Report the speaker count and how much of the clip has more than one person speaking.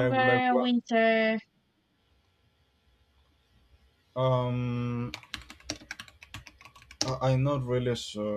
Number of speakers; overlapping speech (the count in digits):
2, about 8%